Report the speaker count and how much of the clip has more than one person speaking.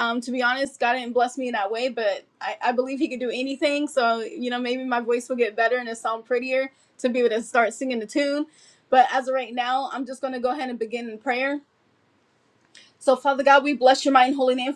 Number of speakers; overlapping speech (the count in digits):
1, no overlap